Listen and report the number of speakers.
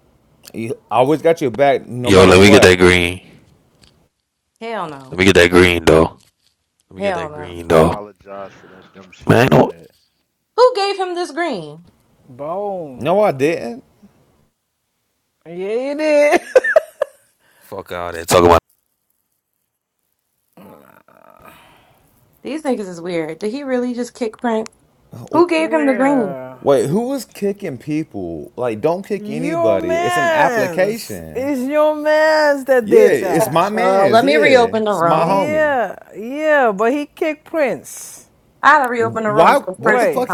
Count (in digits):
5